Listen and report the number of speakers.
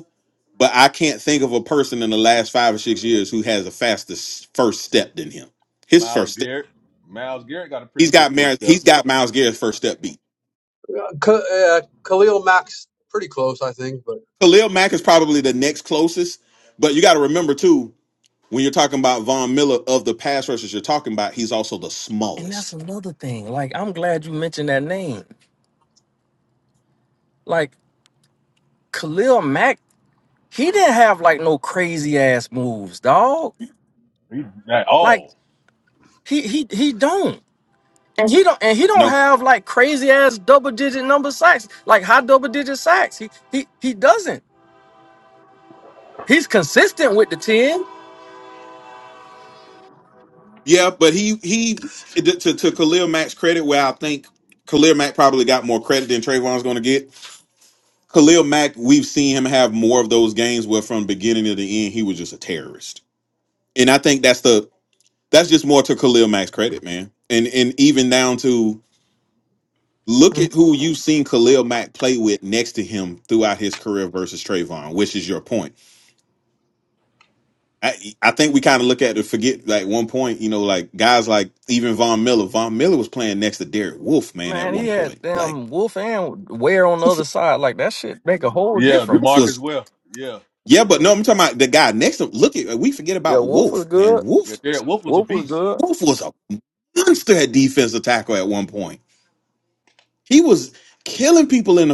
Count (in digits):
4